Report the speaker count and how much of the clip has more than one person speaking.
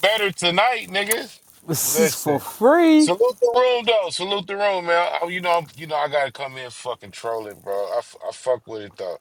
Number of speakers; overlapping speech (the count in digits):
2, about 7%